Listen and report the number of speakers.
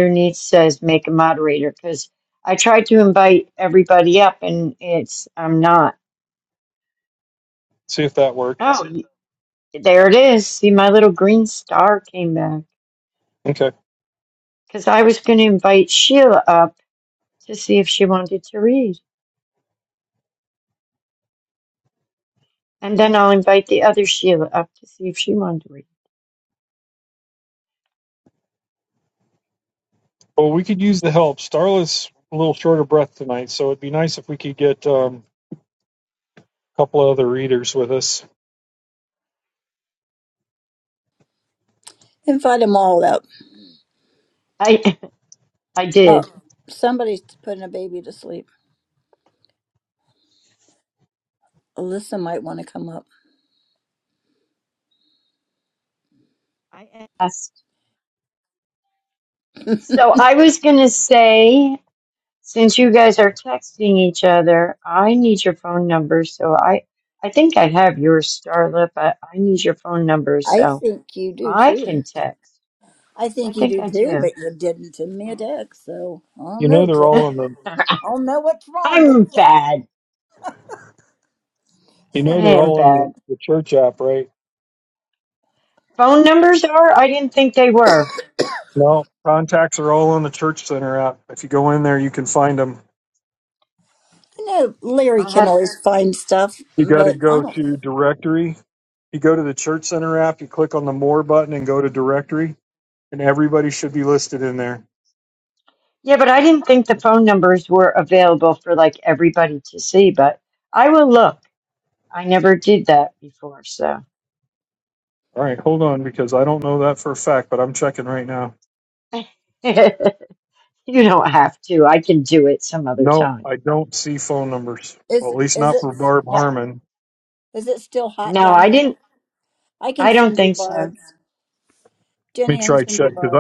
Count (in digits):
3